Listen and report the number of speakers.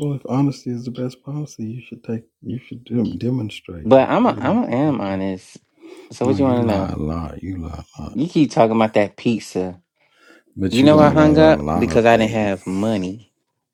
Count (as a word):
two